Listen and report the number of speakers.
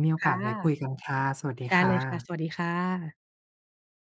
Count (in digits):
2